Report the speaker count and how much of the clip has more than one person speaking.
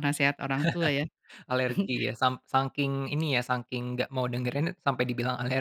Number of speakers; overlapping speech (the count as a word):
two, no overlap